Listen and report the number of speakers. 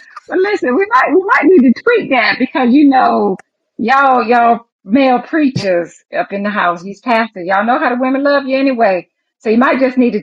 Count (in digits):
1